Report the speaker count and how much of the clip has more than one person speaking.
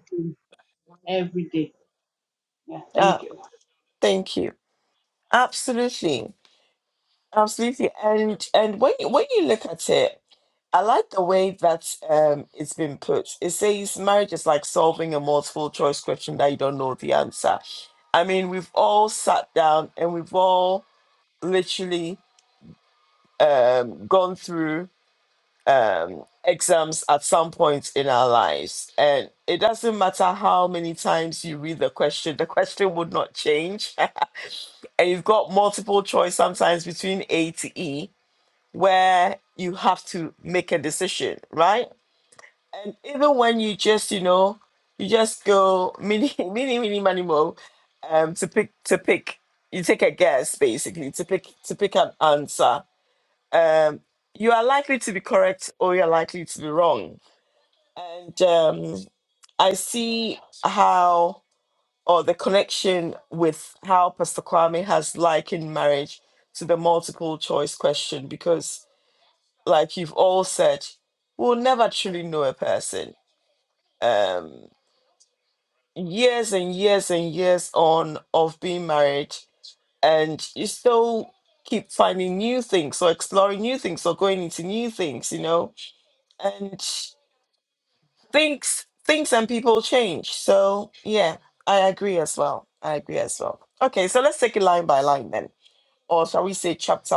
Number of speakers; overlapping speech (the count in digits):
2, under 1%